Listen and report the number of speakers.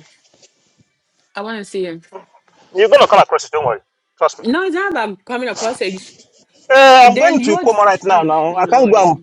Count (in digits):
2